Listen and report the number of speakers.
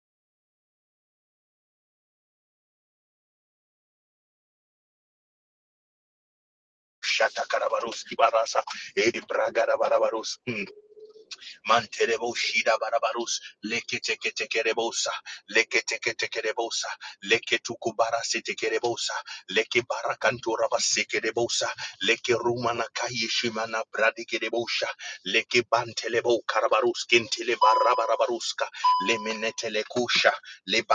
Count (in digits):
1